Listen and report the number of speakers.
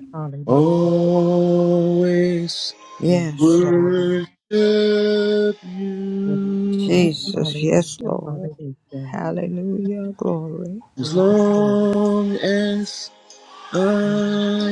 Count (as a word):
three